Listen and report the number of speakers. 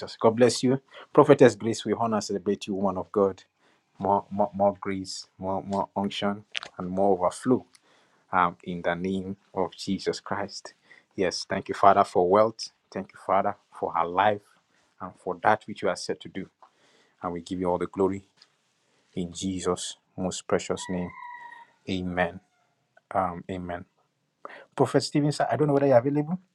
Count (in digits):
1